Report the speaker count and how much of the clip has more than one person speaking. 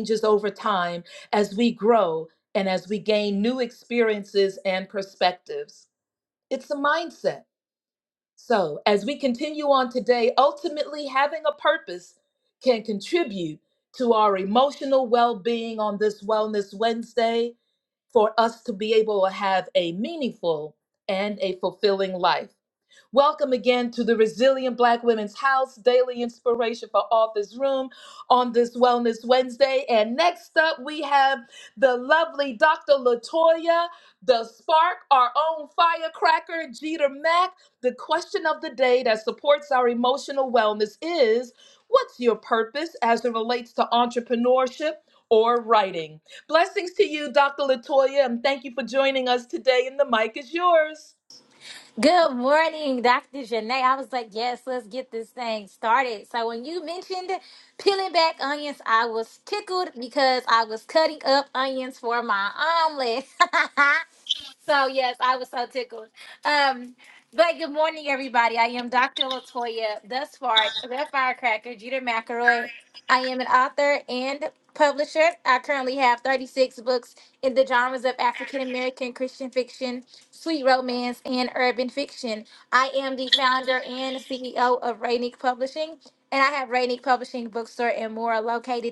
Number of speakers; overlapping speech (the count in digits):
2, no overlap